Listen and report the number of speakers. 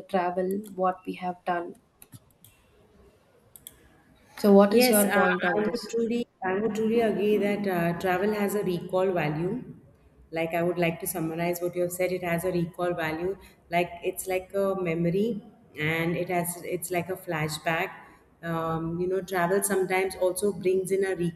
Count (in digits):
2